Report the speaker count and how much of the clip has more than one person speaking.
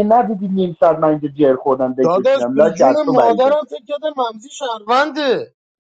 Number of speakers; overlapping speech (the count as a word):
two, about 27%